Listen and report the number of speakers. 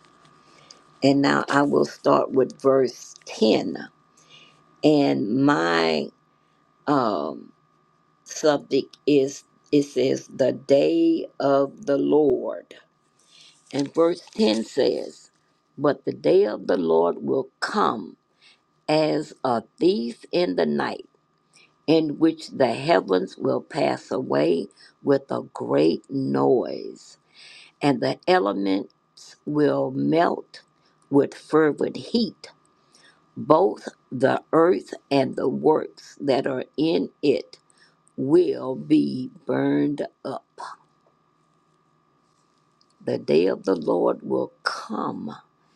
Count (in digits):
1